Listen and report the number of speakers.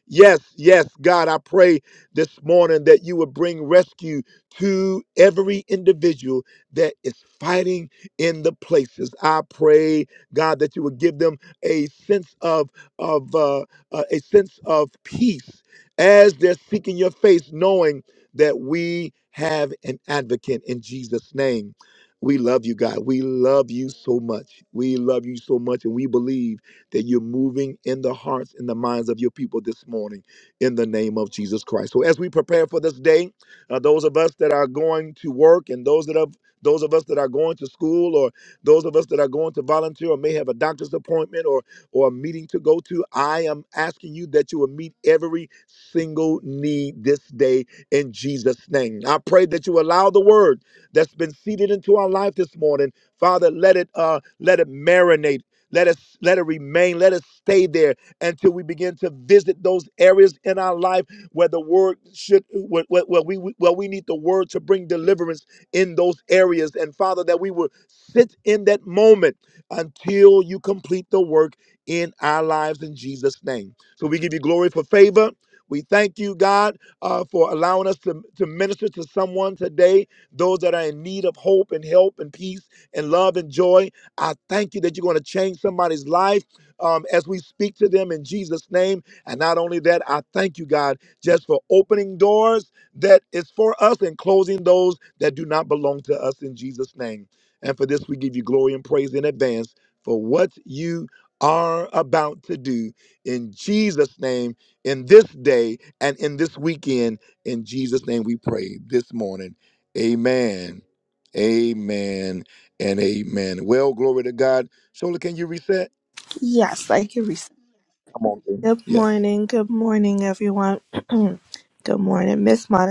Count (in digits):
2